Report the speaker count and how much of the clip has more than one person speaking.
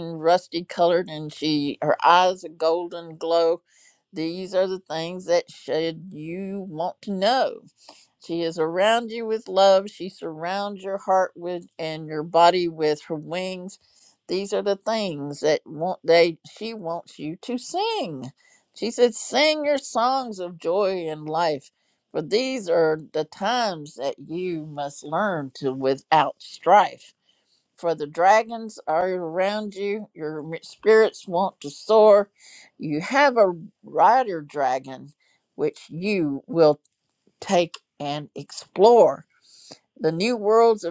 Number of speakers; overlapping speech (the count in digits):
1, no overlap